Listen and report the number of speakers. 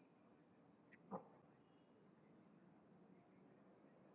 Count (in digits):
0